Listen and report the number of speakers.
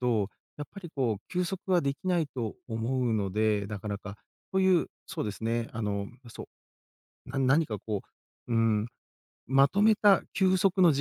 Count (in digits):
1